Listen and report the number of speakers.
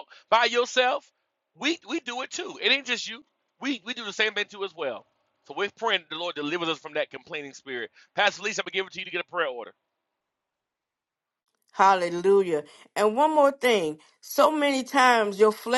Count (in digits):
2